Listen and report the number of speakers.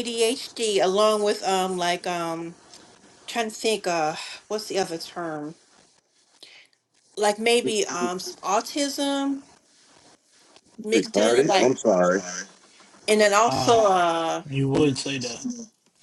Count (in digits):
3